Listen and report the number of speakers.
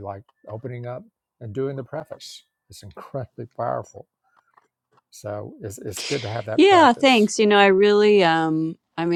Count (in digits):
2